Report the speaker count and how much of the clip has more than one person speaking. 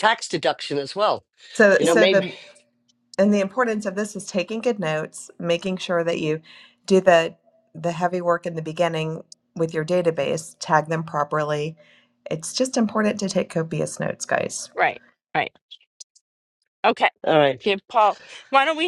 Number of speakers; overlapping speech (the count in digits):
3, about 3%